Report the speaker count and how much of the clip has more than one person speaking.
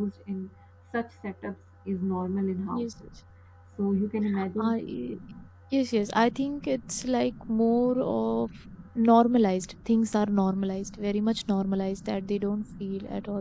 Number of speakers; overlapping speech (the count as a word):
two, about 4%